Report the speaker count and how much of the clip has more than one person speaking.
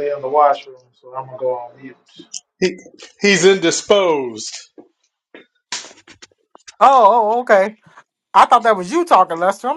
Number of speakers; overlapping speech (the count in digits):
3, no overlap